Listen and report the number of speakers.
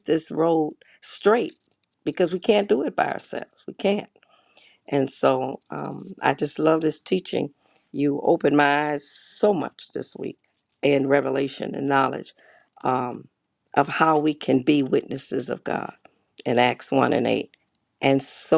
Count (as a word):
one